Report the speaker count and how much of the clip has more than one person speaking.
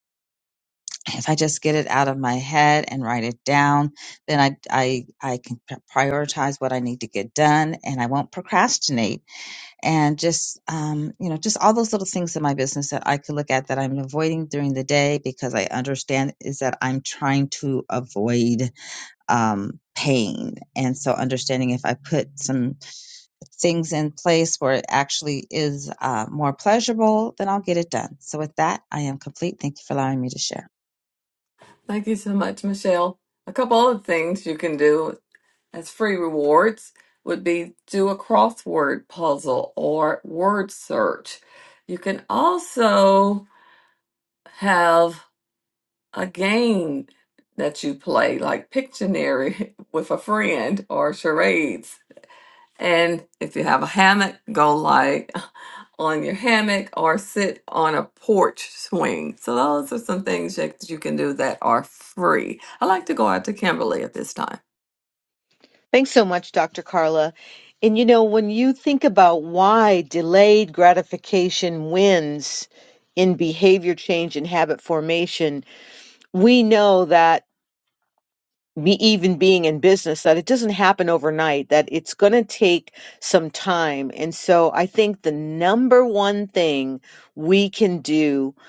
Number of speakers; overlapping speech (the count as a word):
three, no overlap